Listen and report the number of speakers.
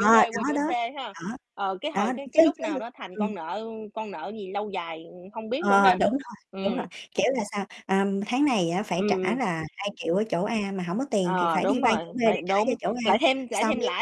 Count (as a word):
two